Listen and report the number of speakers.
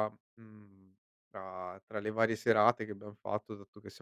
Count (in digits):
1